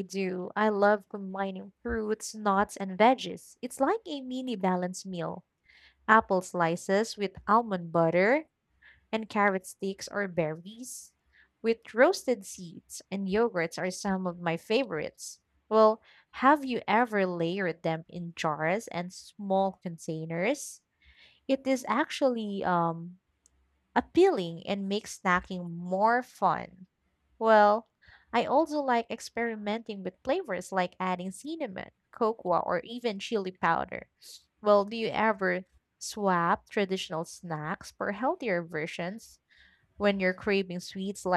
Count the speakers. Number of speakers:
1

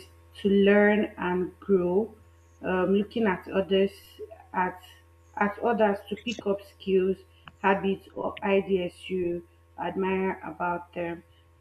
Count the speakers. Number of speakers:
1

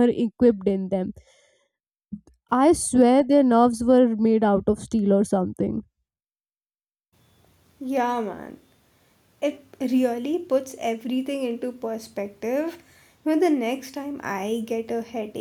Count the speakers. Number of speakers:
2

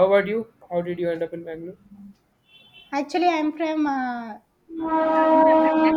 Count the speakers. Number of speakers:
2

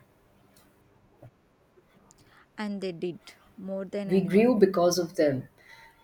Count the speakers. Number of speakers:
2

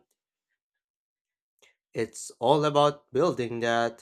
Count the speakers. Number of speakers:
1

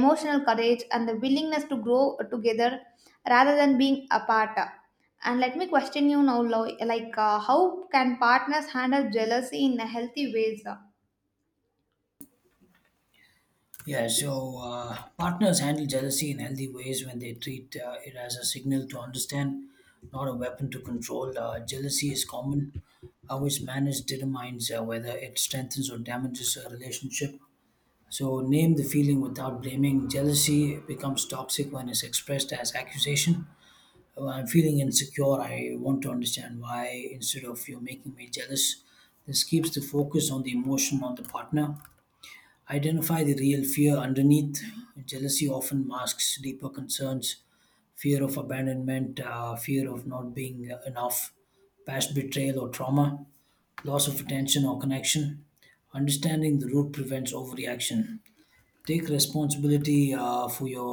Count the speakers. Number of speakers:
2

